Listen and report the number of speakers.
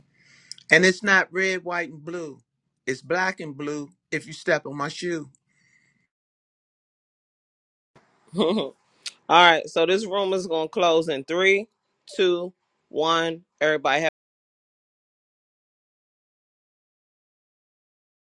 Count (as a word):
two